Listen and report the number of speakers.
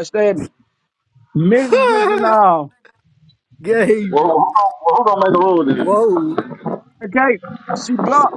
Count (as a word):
three